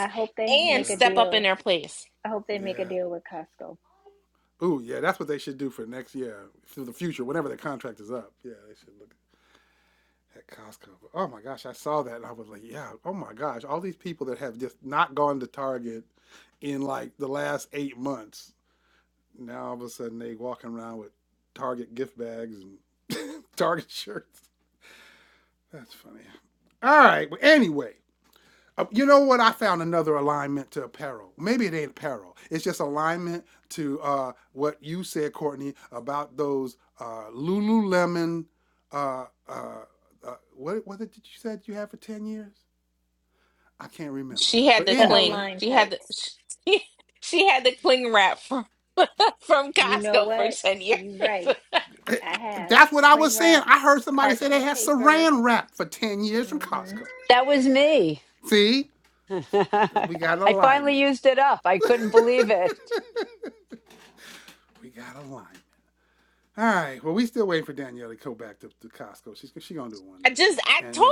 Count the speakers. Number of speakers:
4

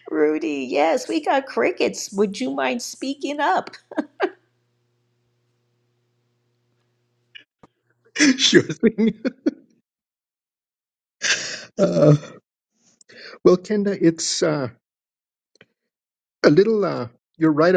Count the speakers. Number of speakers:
2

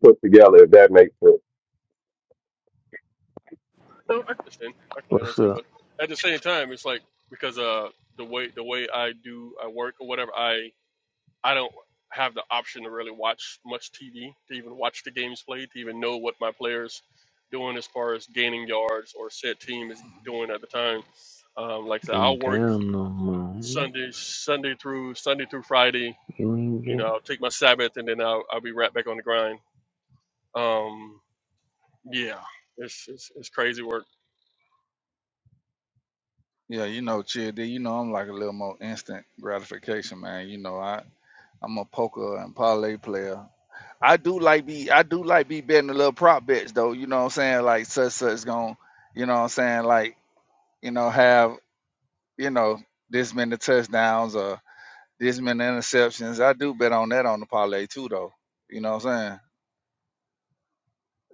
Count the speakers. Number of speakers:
4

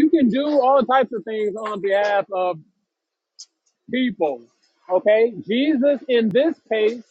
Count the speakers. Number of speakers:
1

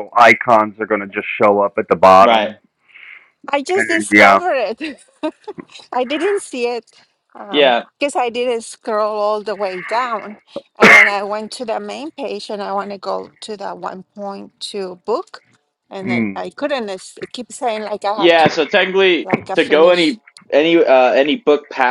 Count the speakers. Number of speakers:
3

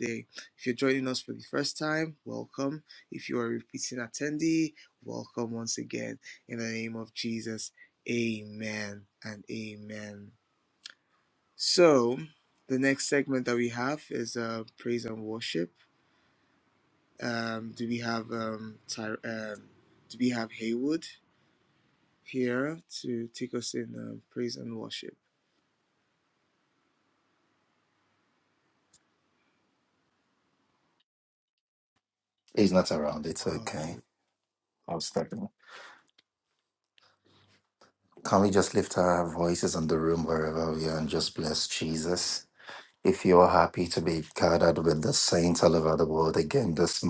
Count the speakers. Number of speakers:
2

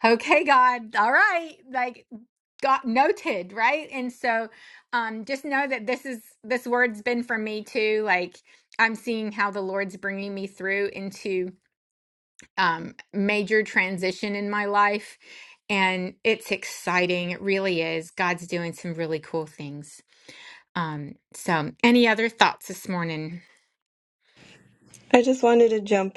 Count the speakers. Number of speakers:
2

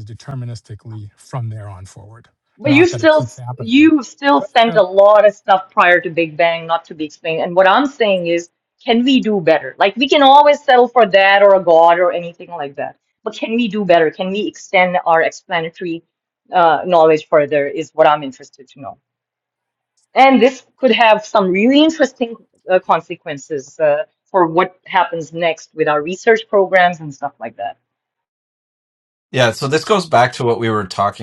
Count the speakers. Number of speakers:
3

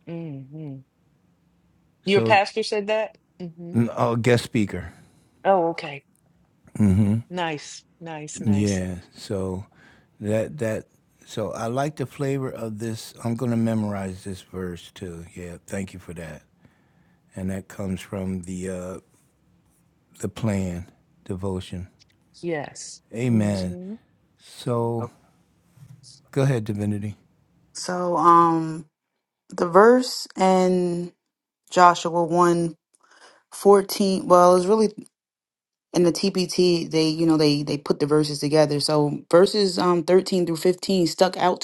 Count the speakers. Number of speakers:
3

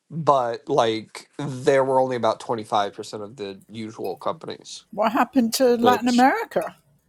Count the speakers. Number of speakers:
2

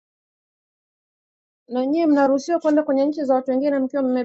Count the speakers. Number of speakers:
1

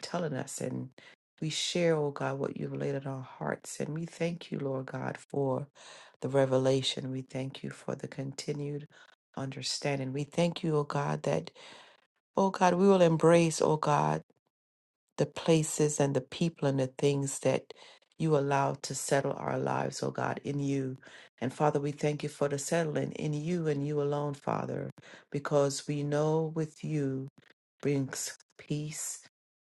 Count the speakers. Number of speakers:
1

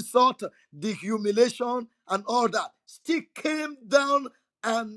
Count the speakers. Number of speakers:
1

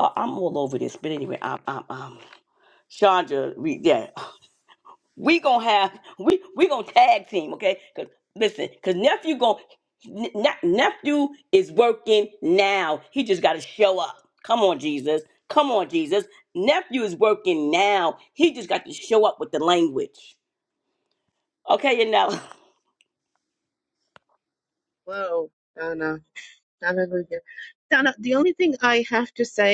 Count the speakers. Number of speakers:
2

